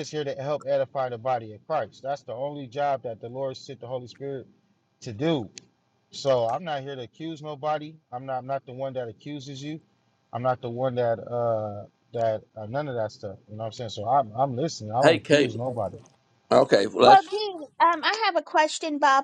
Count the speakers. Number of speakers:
three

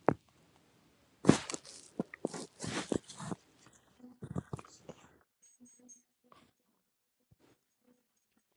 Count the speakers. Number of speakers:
zero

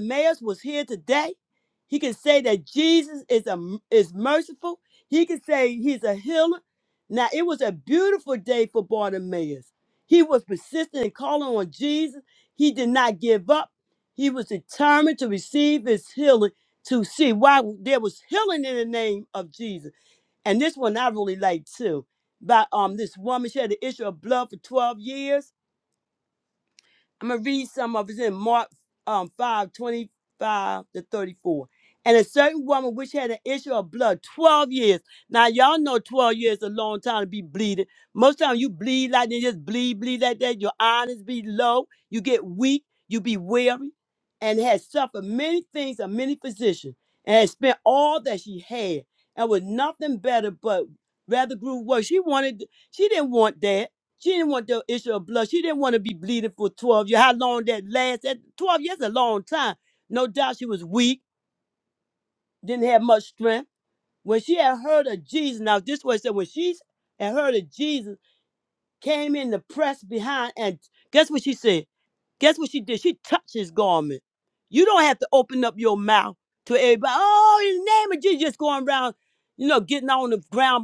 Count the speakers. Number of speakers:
one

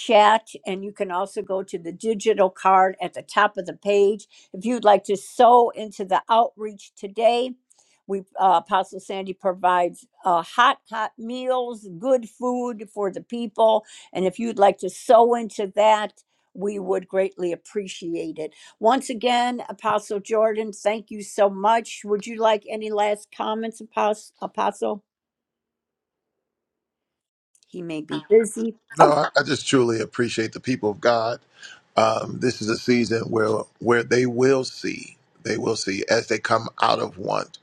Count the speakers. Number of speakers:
two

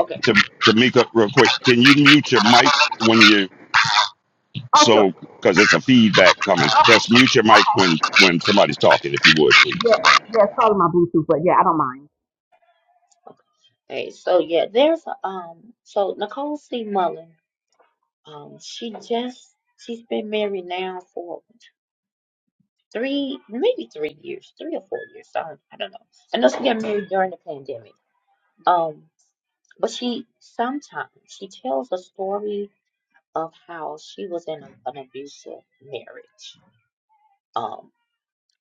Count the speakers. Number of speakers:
three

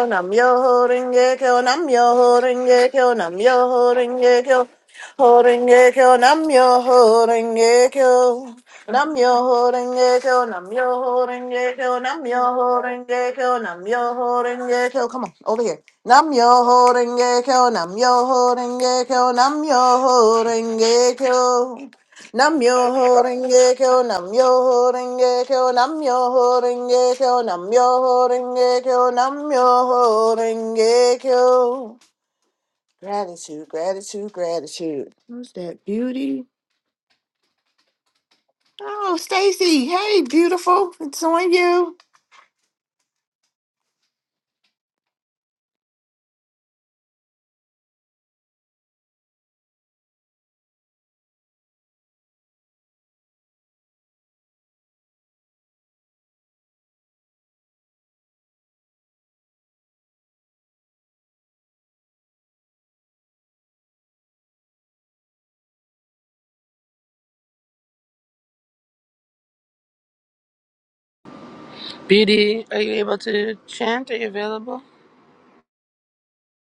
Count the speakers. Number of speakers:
two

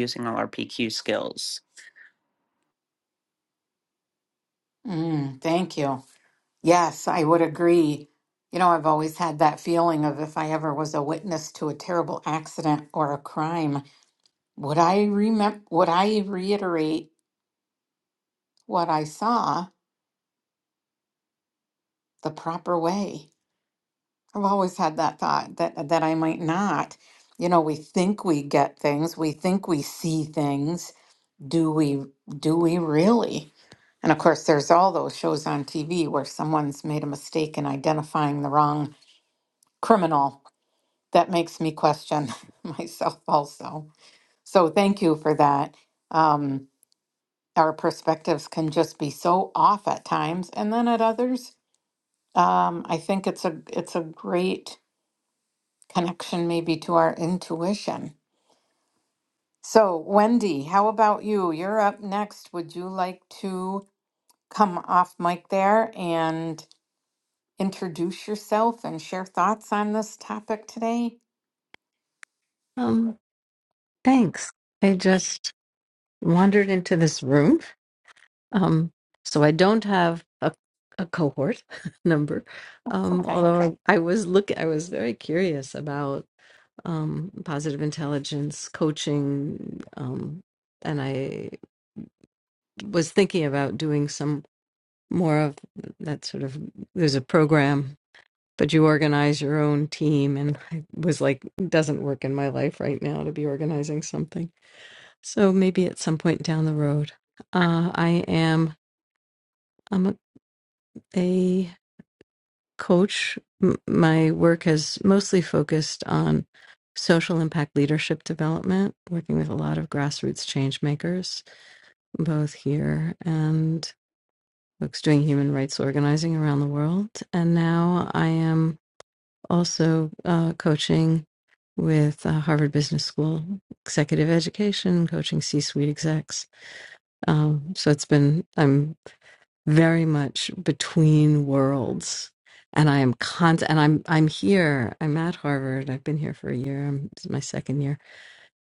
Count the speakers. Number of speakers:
three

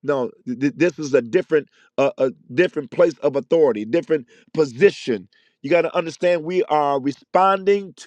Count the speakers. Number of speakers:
one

